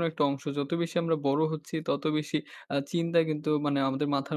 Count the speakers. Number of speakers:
1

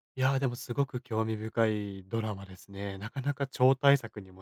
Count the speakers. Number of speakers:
1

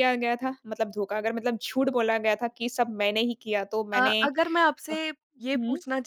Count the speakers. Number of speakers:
2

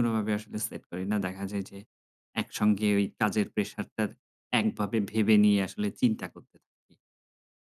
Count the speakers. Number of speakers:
1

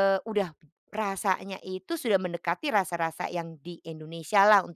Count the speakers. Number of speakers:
1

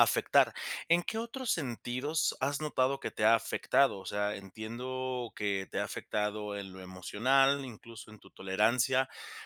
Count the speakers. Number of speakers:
1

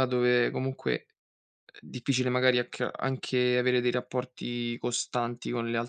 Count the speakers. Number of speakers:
1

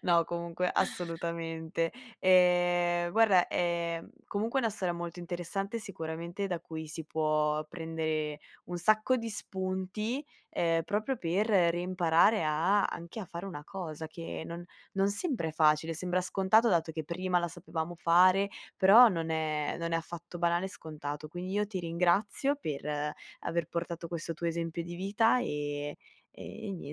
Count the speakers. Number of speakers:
1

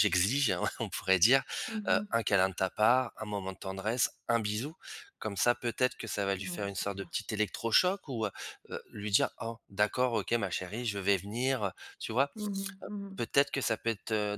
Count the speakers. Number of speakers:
2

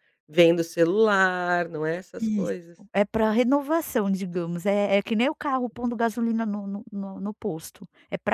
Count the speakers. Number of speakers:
2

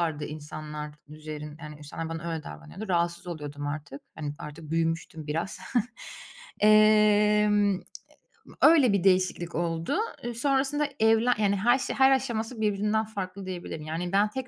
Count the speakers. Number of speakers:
1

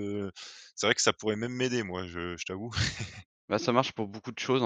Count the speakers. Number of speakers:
2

